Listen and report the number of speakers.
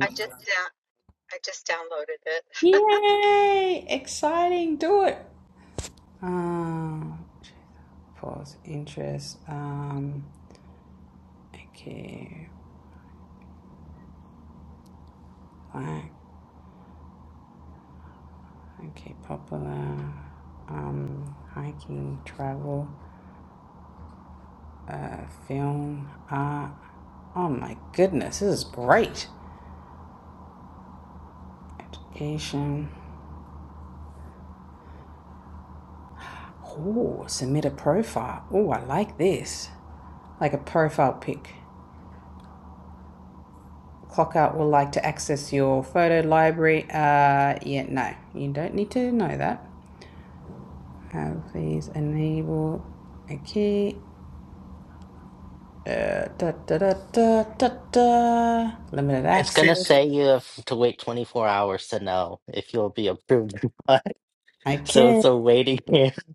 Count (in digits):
3